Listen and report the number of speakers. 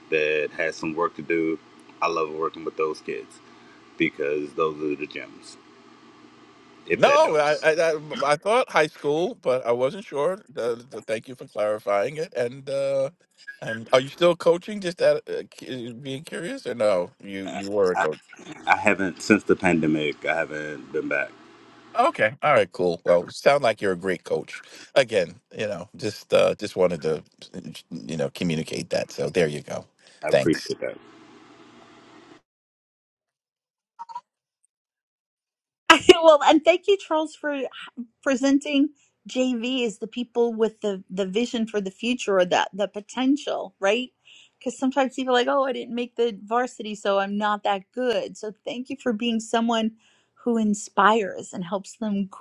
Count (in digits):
3